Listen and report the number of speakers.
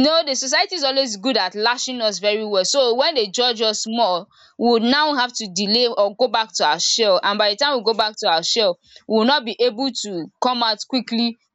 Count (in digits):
1